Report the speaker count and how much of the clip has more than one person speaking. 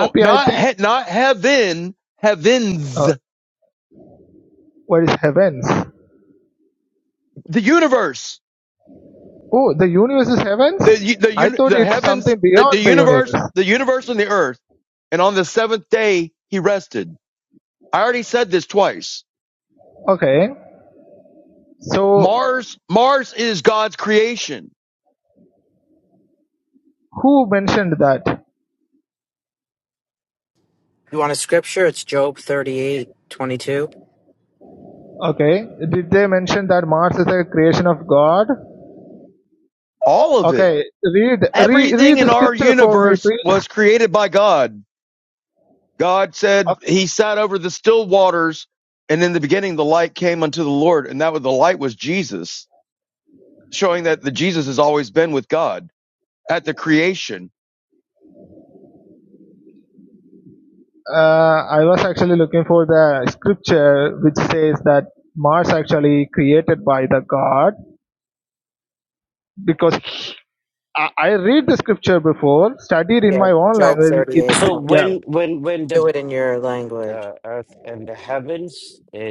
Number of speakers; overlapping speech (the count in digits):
4, about 10%